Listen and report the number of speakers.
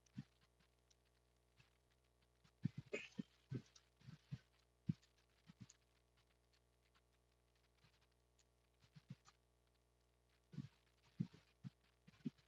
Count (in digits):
0